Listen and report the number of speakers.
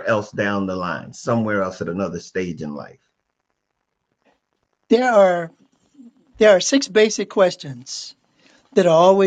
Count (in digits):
2